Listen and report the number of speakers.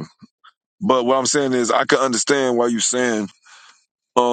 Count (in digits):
1